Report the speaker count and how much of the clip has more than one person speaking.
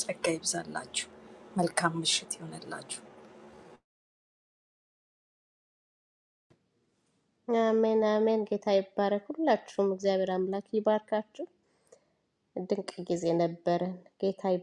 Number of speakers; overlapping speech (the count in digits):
2, no overlap